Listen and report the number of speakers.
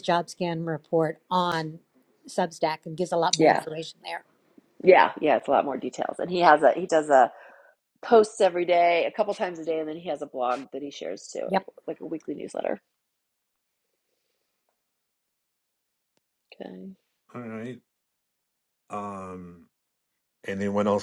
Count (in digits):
3